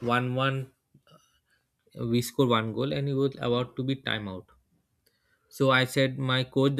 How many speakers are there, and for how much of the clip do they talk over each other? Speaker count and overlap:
one, no overlap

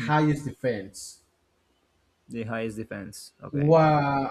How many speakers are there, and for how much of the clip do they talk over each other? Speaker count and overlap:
two, about 5%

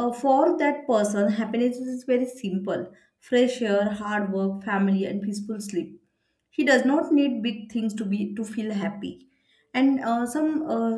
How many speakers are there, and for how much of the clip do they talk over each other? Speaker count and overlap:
one, no overlap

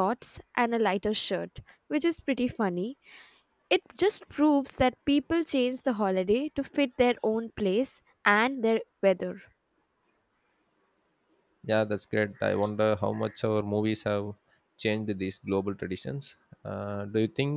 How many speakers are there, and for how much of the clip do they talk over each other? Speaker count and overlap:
two, no overlap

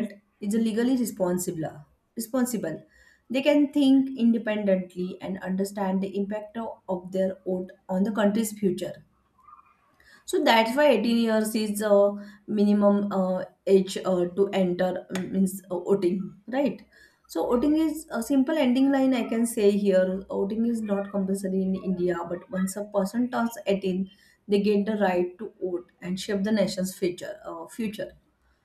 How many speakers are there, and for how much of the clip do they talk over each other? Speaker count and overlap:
one, no overlap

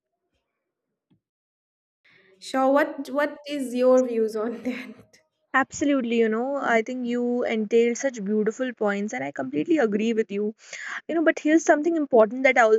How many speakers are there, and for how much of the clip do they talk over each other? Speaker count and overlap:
two, no overlap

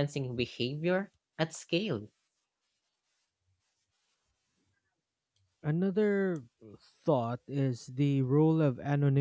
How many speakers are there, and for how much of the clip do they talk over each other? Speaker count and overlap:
two, no overlap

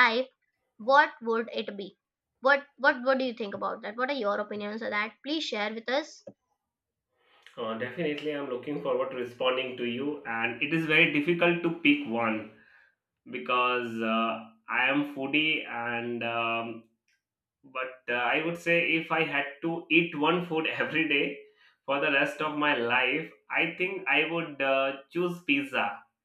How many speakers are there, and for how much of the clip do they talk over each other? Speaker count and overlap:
two, no overlap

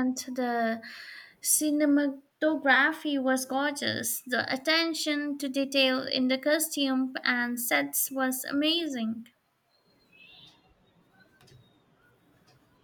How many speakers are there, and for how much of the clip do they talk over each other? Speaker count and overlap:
one, no overlap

